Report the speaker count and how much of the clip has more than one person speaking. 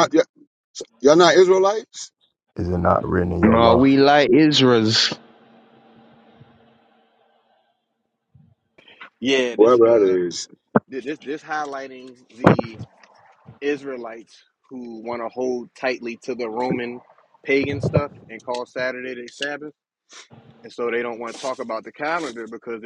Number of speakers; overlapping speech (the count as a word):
four, about 5%